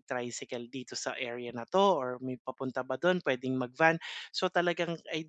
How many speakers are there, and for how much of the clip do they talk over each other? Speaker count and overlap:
one, no overlap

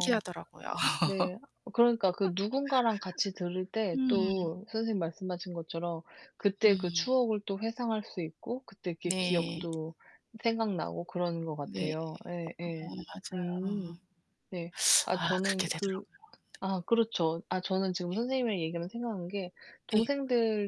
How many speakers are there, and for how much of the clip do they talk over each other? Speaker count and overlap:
two, about 18%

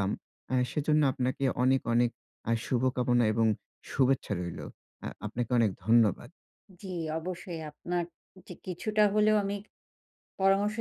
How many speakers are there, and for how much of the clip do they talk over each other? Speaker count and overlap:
two, no overlap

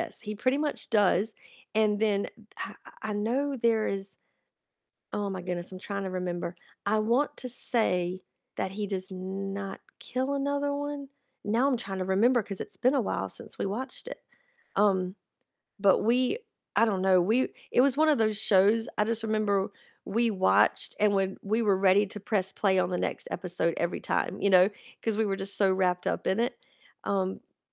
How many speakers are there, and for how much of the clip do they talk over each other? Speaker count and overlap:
one, no overlap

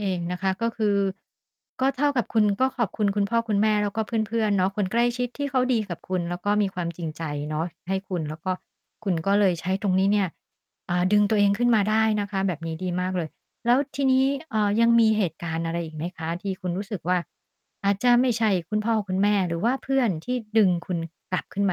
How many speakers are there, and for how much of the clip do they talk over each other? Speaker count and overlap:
one, no overlap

